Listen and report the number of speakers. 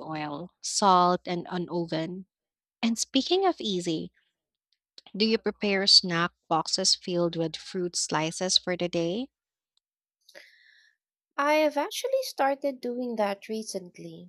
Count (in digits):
2